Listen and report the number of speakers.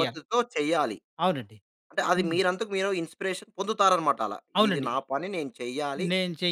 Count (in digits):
2